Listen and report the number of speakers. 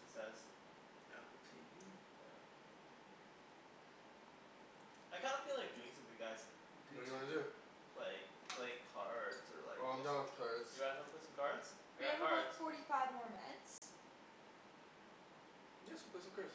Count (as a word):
four